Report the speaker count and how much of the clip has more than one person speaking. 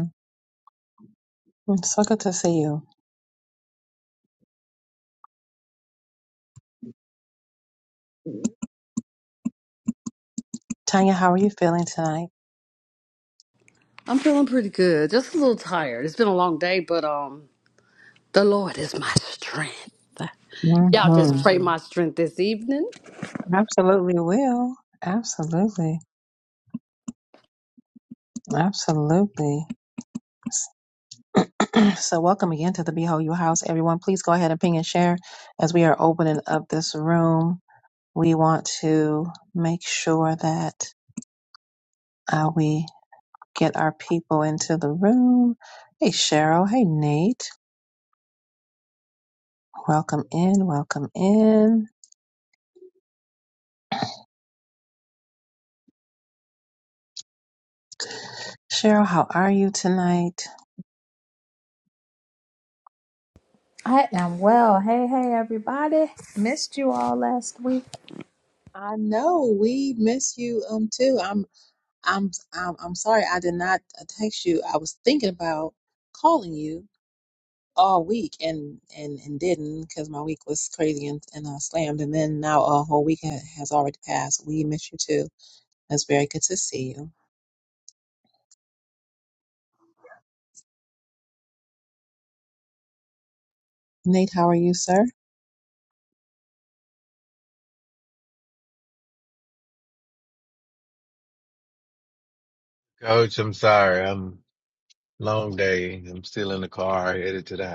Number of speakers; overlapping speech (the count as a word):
four, under 1%